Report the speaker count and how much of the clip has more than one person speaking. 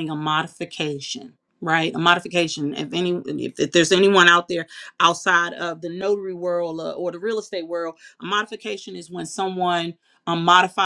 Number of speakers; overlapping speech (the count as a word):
one, no overlap